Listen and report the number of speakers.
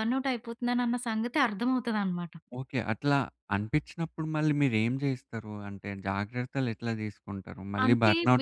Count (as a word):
two